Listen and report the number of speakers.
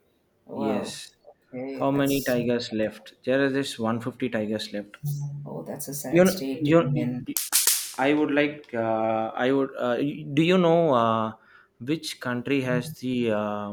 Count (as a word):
two